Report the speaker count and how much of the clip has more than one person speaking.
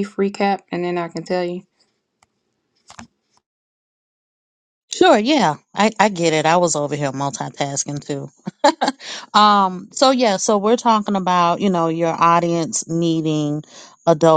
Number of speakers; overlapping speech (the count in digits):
2, no overlap